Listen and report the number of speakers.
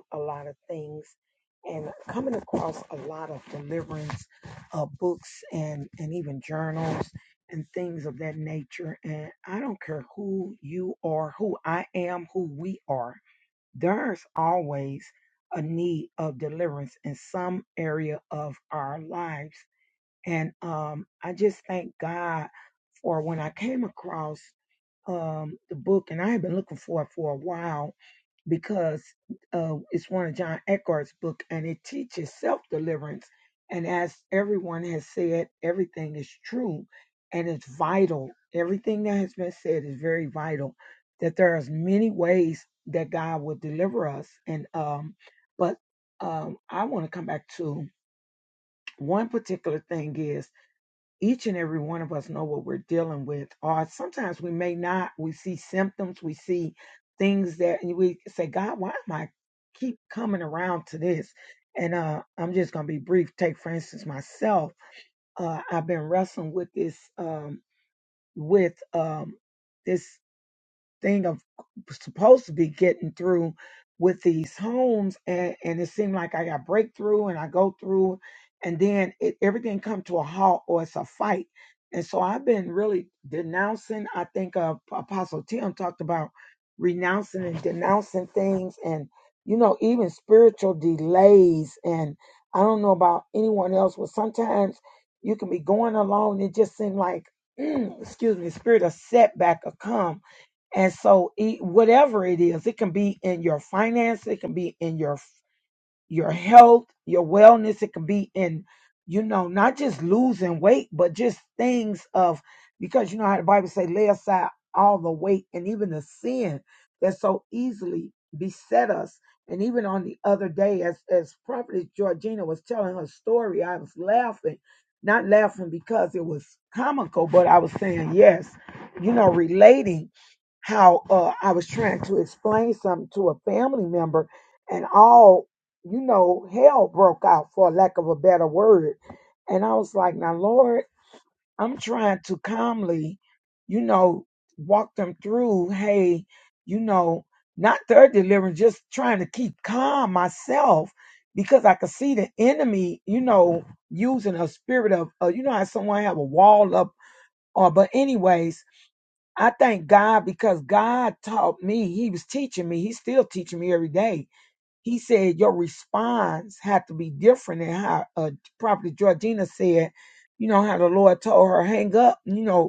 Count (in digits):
1